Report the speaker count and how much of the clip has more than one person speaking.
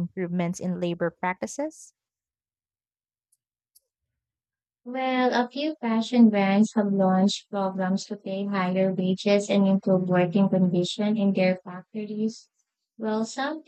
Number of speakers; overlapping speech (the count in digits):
2, no overlap